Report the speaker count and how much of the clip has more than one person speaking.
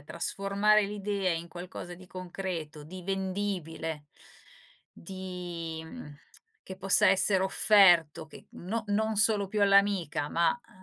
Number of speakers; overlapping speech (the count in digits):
1, no overlap